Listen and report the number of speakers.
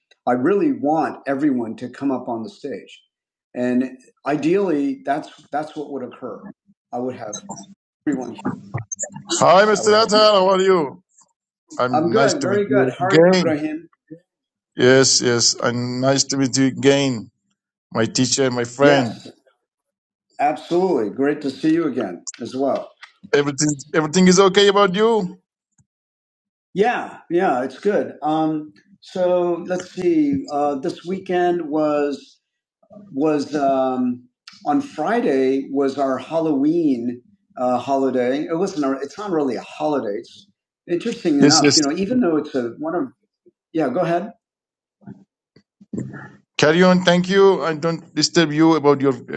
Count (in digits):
2